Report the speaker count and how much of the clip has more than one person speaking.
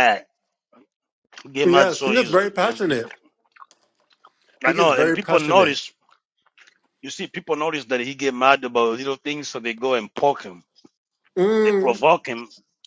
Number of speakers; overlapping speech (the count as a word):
two, about 20%